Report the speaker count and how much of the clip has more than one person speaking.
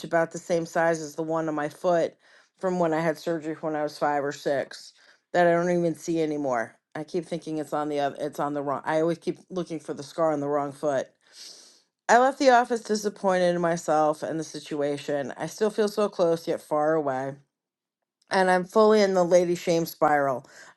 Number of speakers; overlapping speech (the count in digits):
1, no overlap